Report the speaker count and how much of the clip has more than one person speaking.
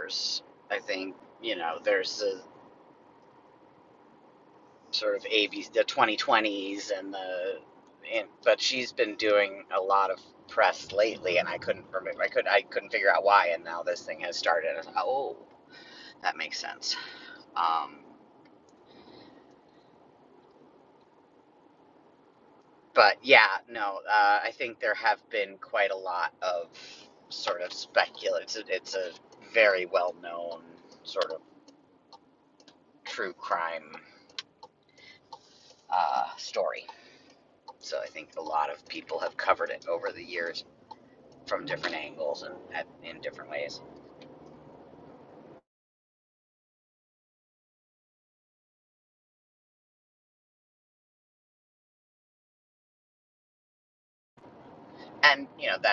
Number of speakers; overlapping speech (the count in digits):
1, no overlap